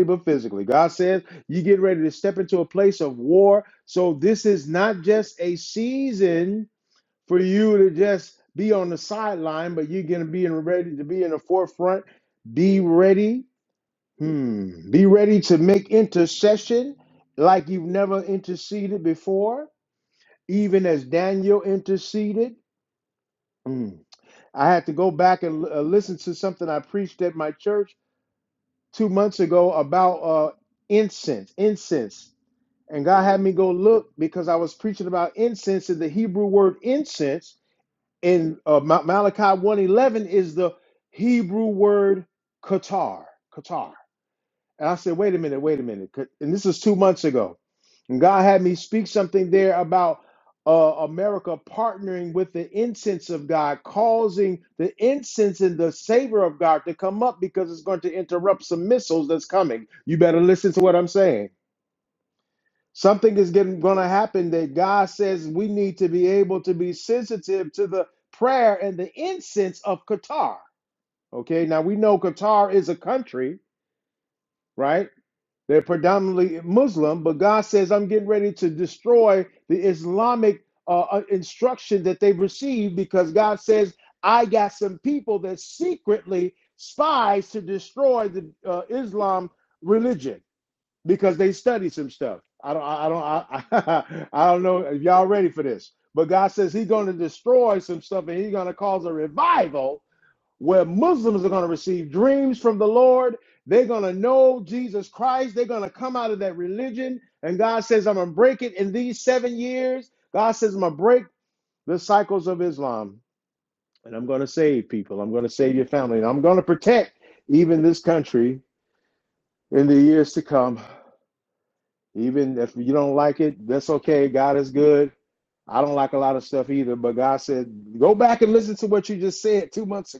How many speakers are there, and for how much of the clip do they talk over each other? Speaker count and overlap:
1, no overlap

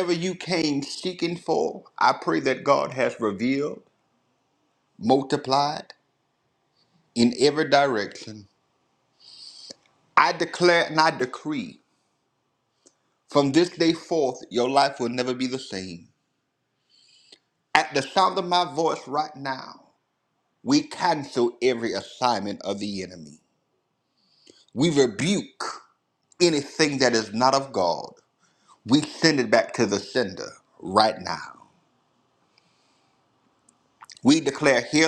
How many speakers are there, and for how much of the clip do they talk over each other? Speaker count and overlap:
1, no overlap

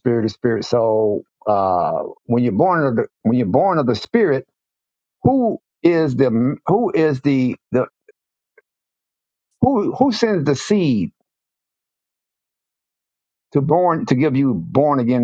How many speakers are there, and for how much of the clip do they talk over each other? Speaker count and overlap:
1, no overlap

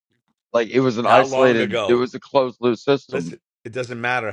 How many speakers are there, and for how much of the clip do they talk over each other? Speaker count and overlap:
2, about 27%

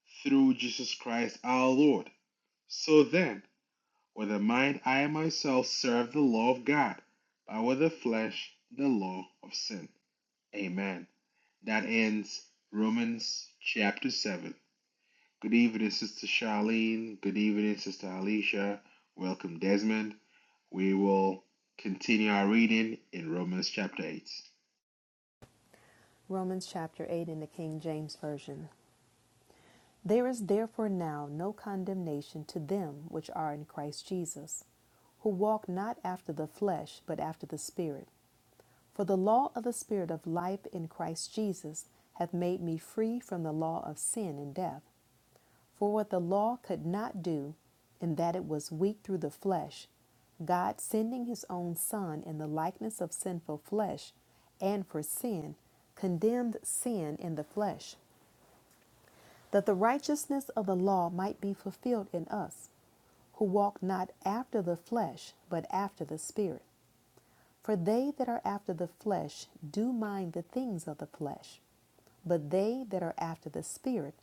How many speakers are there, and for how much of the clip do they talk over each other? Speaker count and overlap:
2, no overlap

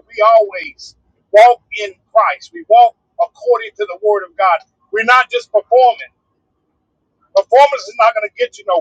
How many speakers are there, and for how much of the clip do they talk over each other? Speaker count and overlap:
1, no overlap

